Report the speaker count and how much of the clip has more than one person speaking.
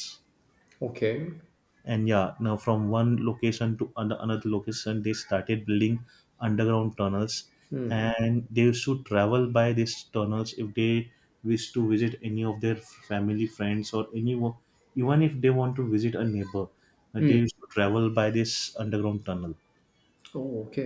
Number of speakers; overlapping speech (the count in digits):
2, about 1%